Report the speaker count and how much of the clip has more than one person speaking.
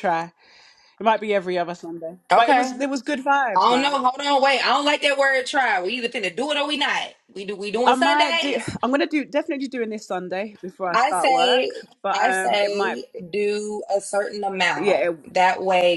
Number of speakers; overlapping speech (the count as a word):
two, about 24%